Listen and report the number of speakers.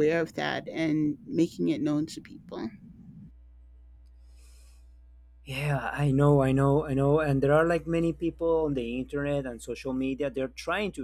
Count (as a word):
two